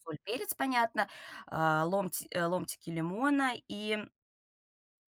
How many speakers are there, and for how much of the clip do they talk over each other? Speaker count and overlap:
1, no overlap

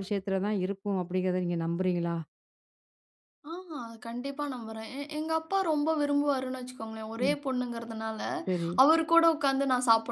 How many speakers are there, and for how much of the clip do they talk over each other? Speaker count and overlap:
2, about 1%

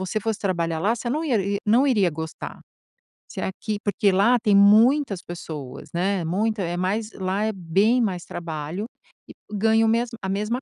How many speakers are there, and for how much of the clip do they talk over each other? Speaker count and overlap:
1, no overlap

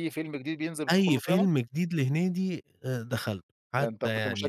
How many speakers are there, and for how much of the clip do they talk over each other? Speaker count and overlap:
2, about 29%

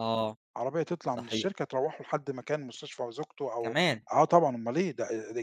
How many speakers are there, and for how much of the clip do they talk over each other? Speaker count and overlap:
2, about 8%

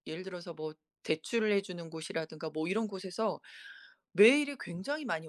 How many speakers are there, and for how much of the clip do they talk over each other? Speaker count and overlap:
1, no overlap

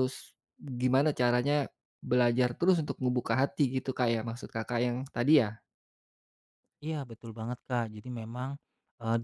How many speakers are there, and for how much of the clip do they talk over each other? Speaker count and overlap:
2, no overlap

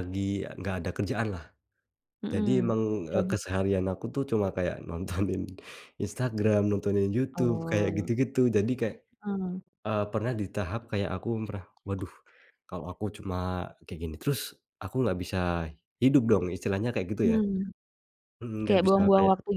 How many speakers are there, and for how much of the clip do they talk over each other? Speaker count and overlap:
2, about 11%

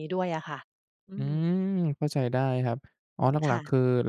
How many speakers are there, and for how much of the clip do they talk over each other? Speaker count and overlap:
2, about 12%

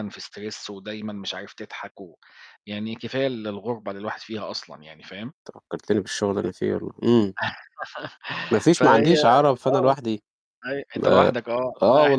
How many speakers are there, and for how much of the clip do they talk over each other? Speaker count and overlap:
2, about 17%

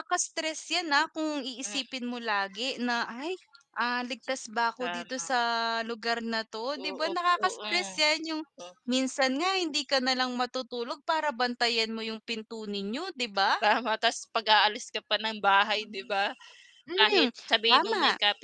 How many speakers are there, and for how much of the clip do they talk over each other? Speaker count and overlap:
2, about 13%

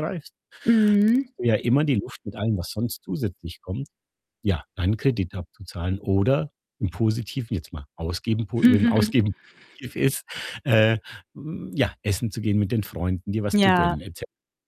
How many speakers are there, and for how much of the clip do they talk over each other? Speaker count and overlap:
2, about 4%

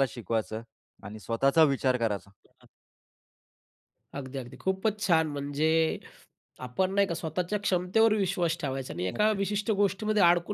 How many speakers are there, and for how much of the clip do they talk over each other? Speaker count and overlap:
2, about 2%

